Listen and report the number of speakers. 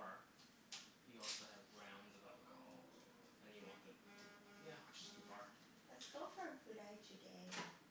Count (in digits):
2